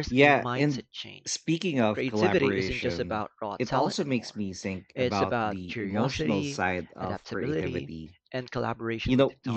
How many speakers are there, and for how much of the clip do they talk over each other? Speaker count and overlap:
2, about 61%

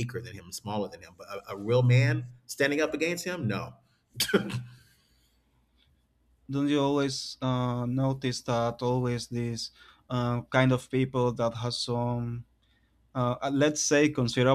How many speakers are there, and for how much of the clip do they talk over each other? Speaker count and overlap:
2, no overlap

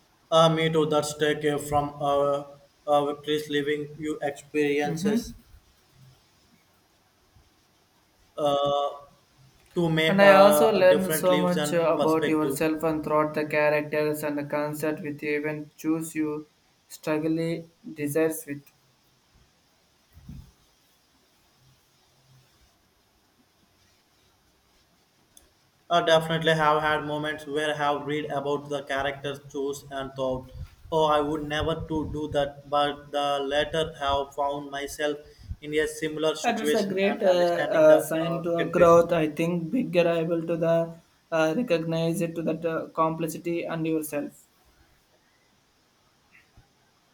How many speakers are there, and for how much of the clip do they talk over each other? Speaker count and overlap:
2, about 11%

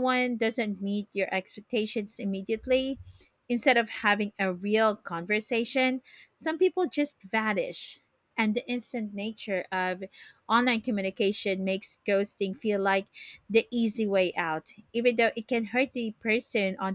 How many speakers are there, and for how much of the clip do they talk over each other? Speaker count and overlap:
1, no overlap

